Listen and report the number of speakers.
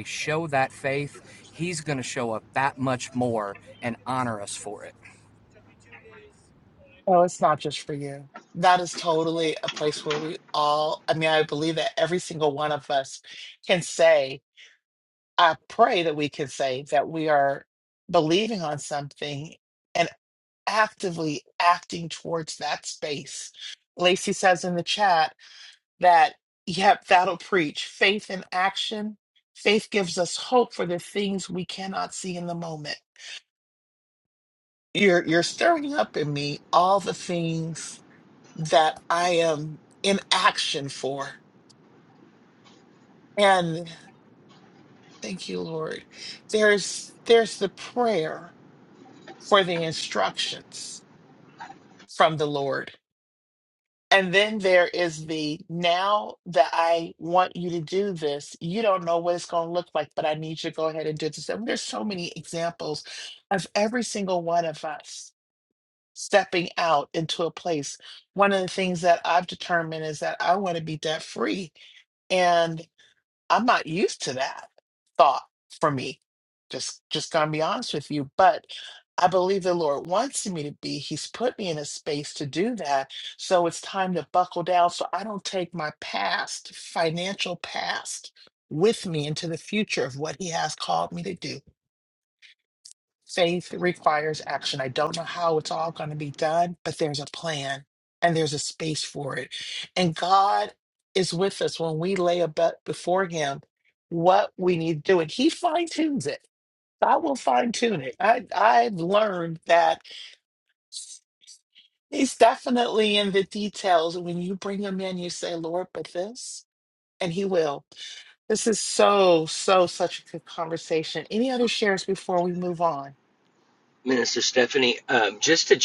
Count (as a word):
three